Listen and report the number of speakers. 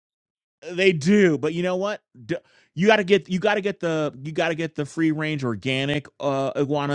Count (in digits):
1